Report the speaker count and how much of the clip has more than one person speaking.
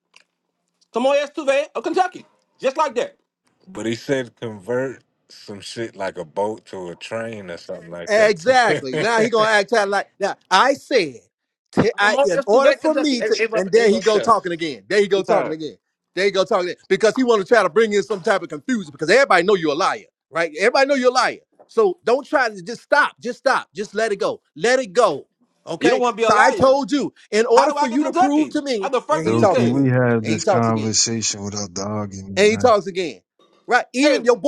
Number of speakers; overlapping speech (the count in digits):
4, about 24%